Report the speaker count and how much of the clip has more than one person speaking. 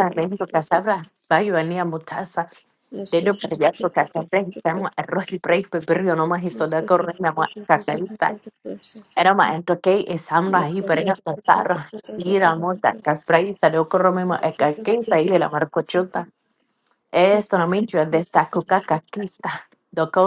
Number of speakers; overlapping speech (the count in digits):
2, about 29%